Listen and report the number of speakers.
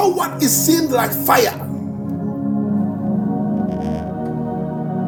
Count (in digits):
1